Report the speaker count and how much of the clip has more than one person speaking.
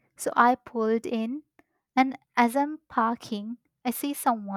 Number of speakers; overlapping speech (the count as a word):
one, no overlap